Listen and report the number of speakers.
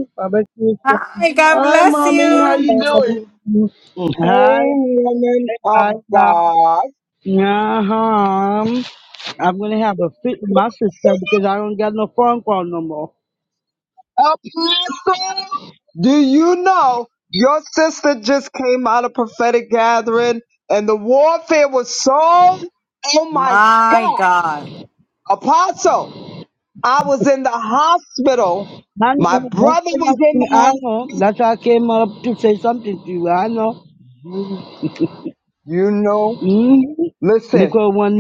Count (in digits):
4